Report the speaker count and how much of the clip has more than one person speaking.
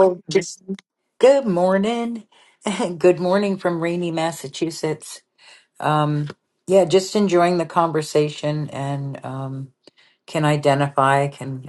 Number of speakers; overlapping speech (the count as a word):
one, no overlap